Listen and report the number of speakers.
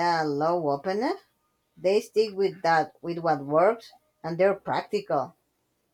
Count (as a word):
one